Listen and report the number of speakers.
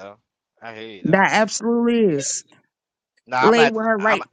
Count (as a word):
two